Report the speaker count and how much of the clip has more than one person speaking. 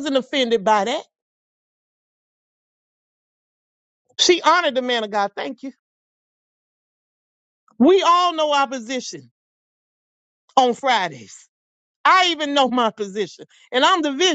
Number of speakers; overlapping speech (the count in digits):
1, no overlap